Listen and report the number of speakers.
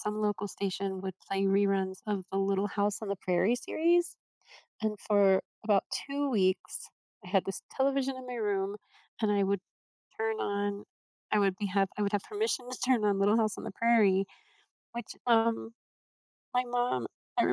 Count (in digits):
1